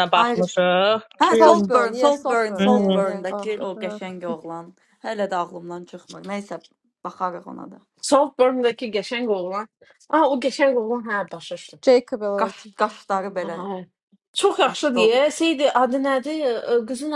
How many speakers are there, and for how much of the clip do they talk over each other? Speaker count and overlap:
4, about 23%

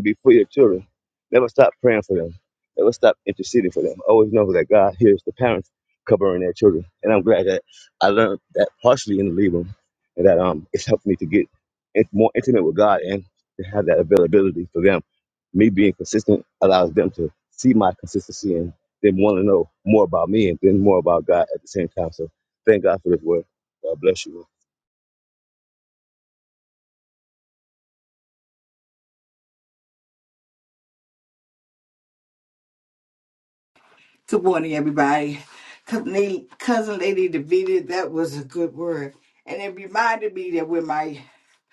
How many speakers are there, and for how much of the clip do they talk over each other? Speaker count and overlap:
2, no overlap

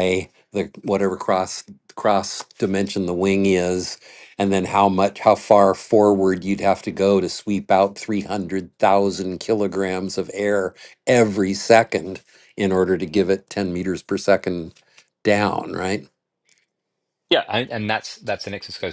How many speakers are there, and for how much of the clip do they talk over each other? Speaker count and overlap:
2, no overlap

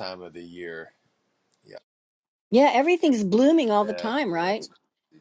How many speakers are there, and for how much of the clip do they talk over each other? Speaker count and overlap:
2, about 16%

